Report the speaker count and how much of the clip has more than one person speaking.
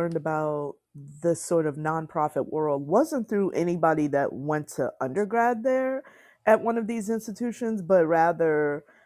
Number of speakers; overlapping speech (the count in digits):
1, no overlap